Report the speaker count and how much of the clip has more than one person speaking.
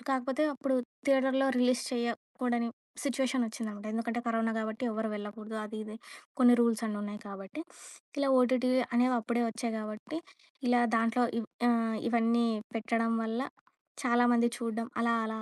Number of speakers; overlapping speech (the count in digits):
1, no overlap